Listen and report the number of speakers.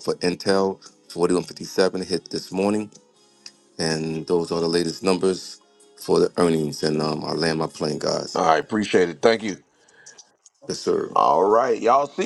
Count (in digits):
2